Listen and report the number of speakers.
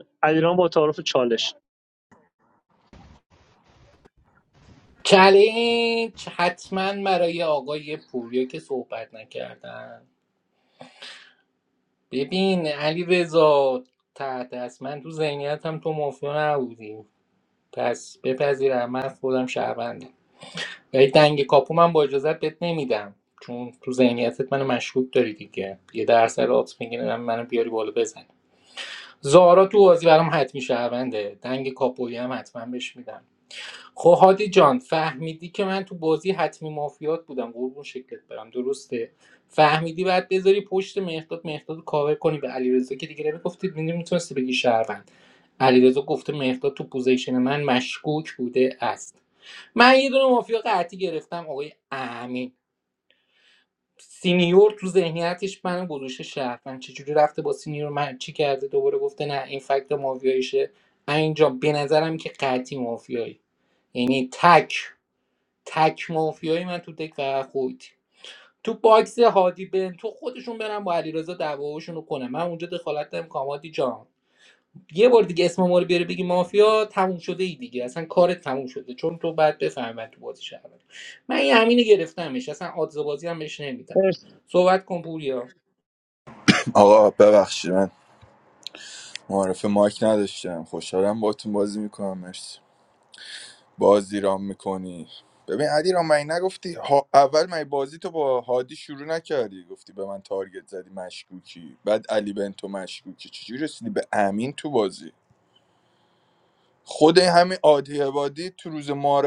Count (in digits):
3